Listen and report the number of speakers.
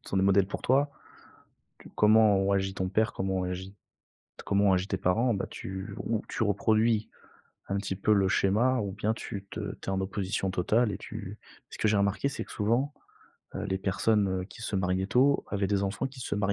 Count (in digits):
1